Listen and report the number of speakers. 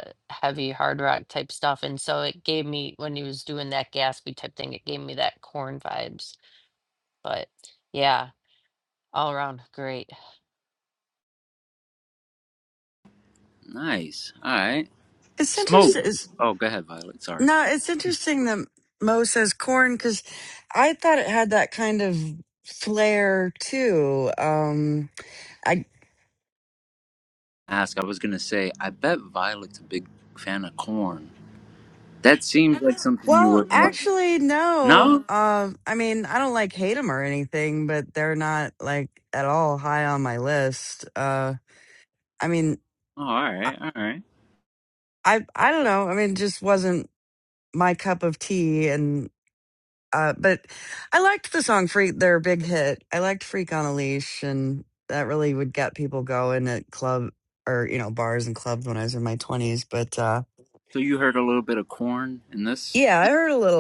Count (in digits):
3